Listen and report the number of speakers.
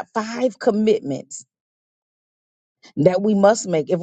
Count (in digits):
1